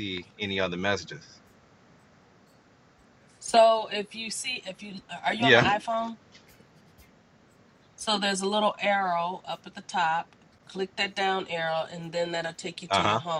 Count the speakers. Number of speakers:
2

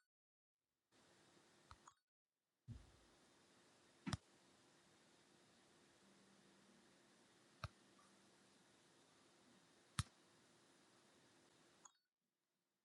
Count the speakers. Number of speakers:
0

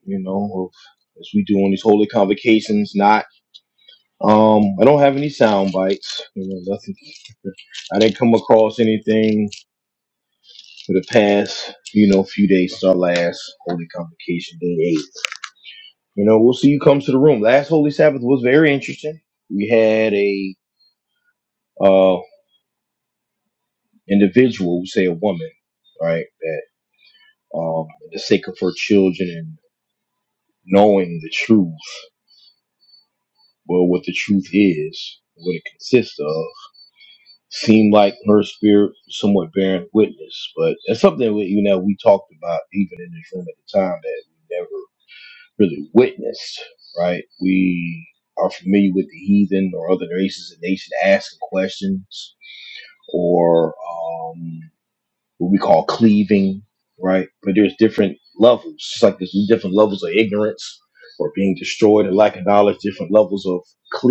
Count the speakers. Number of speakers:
1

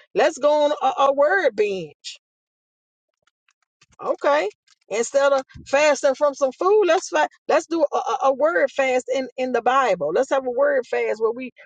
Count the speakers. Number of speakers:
1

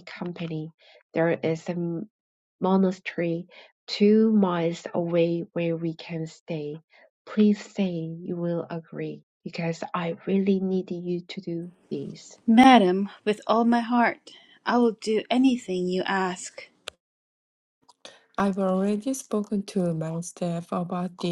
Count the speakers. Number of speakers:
3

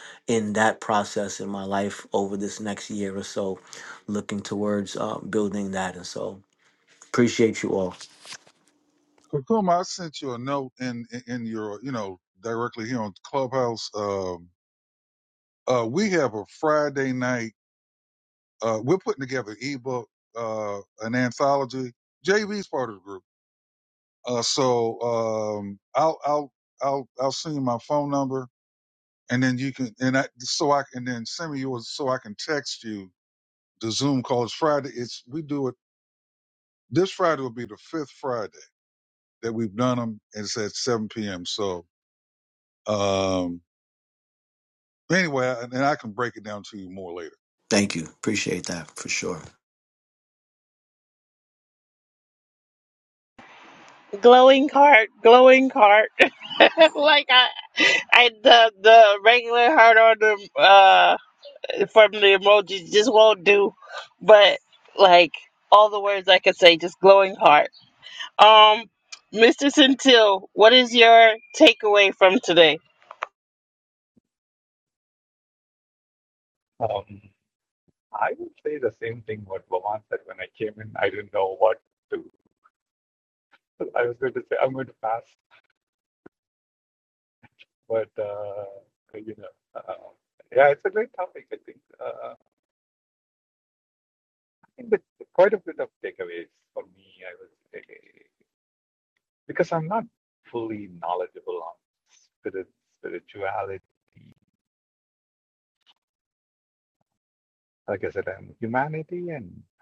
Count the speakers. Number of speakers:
4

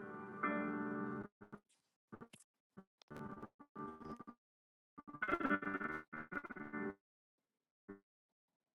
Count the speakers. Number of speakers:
0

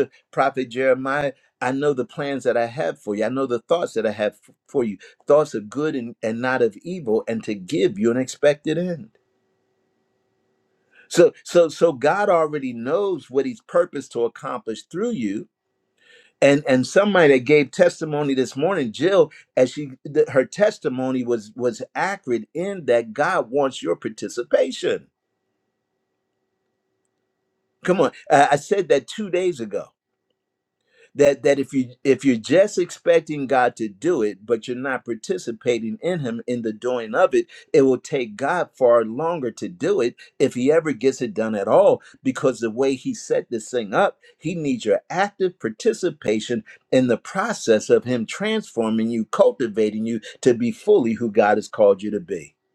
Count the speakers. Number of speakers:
1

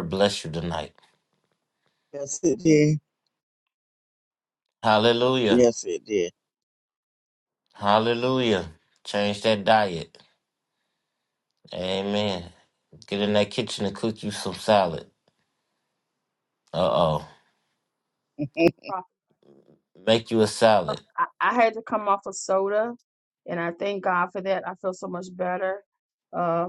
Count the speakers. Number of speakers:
3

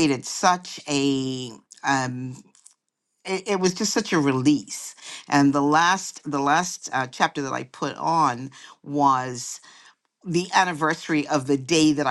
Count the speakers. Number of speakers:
1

